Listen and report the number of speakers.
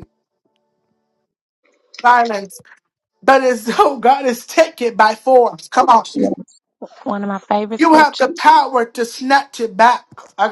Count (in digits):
2